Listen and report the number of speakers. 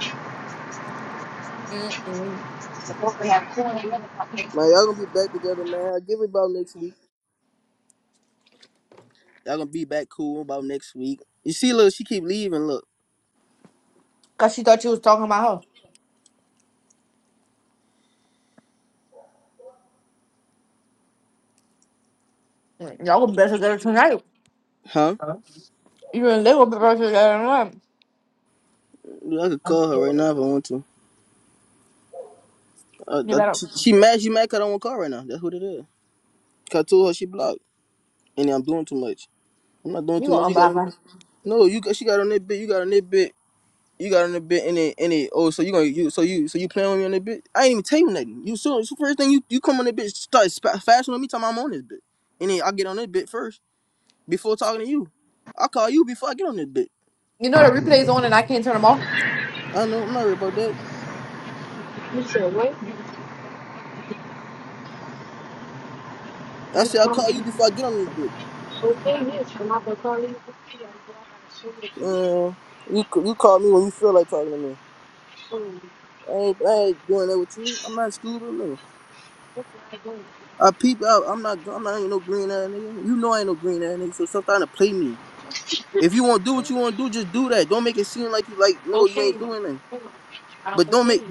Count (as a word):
three